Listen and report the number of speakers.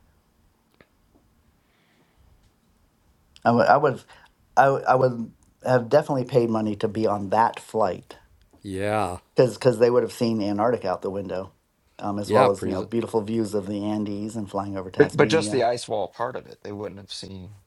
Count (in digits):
3